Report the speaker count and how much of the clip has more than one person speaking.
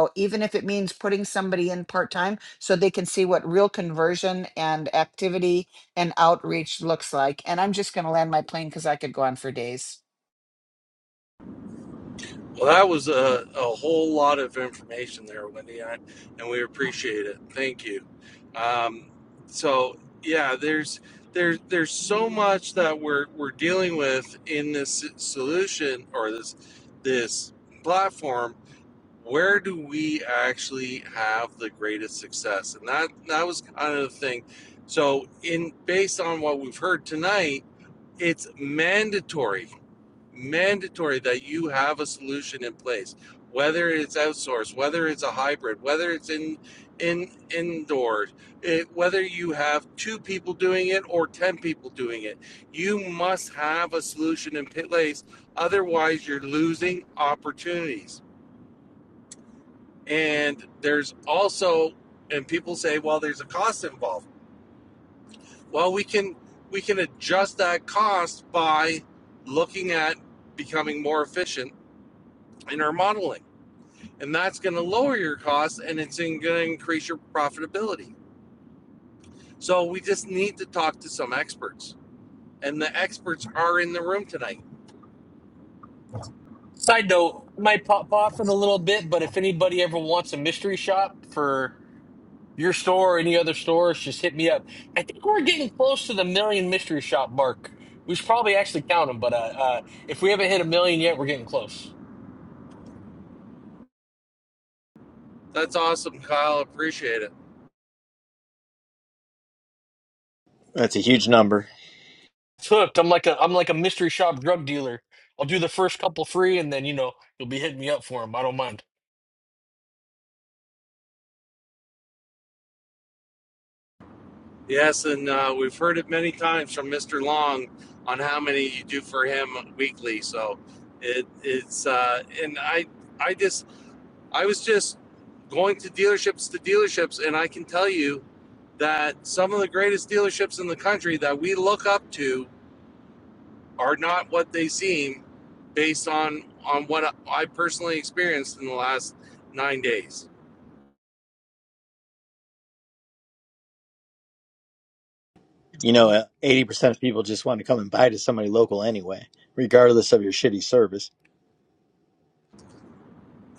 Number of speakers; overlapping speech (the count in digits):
4, no overlap